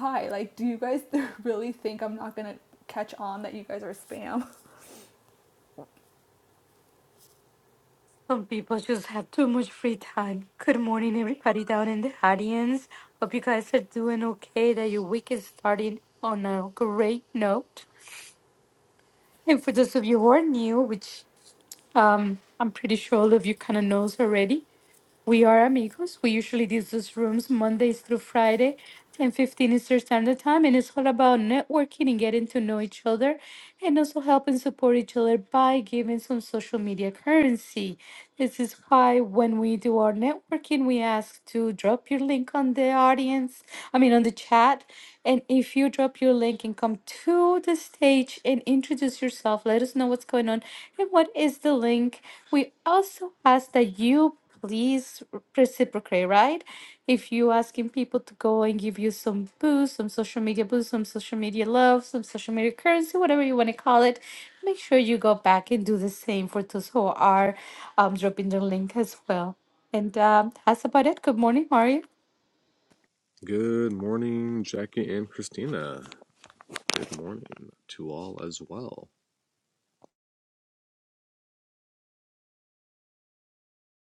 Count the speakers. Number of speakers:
3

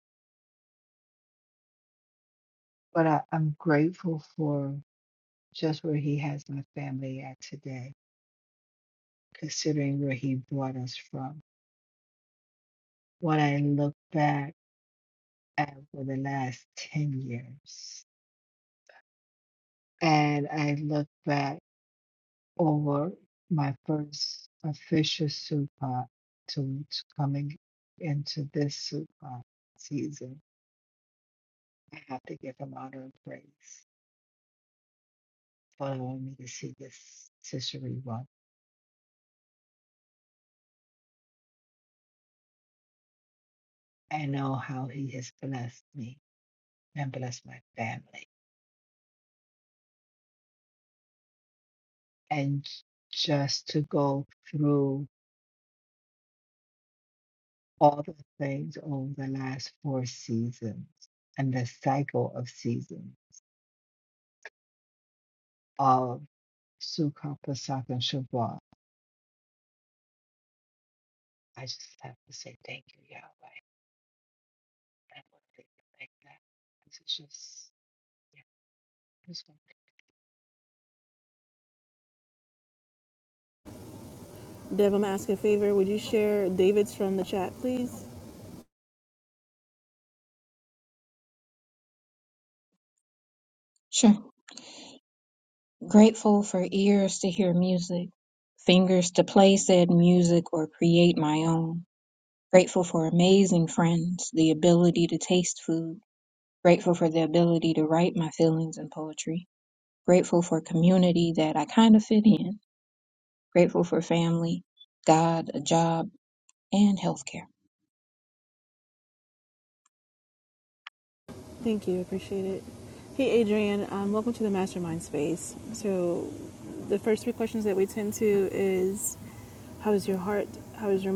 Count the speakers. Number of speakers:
3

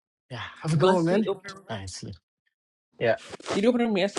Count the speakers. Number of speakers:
2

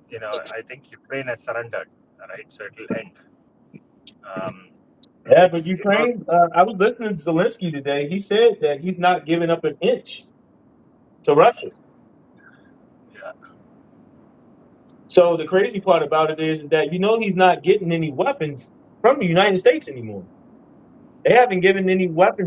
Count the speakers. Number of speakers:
2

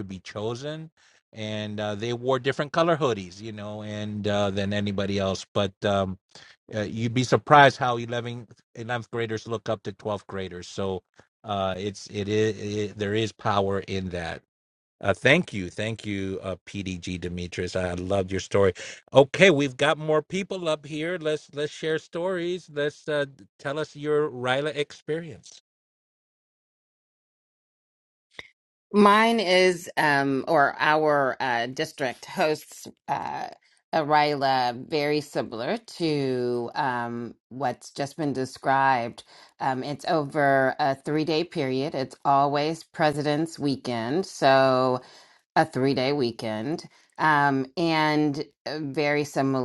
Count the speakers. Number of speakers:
2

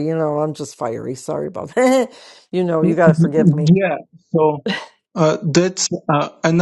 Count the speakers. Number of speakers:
2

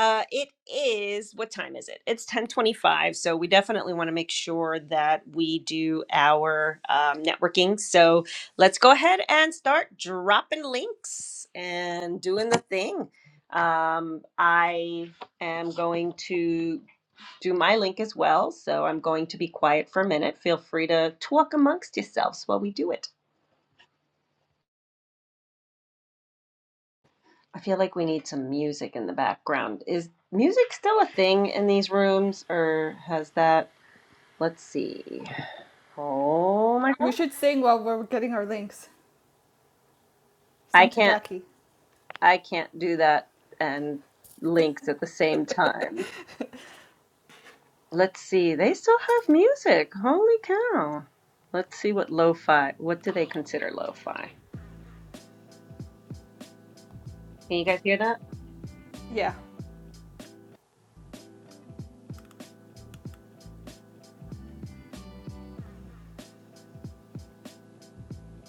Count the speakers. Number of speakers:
2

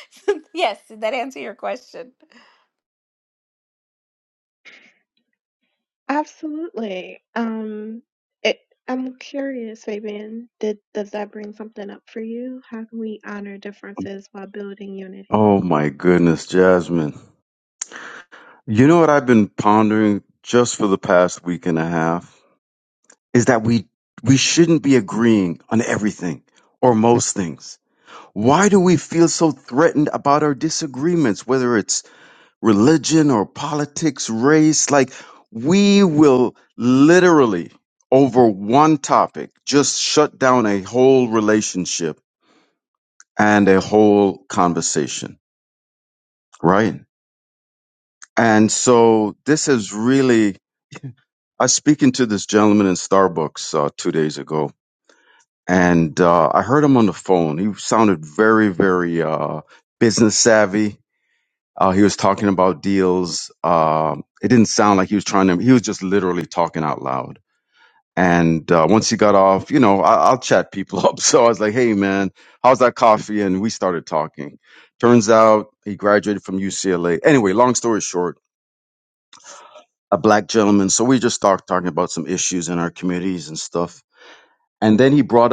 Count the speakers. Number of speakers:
3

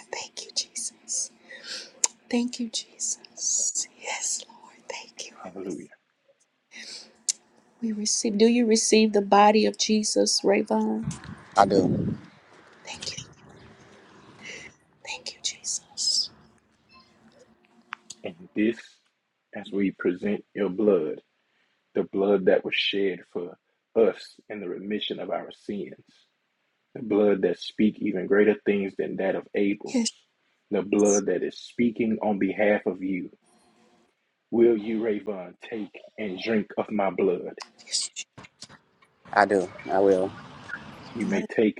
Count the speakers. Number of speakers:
3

